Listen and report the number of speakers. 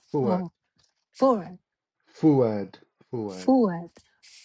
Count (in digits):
2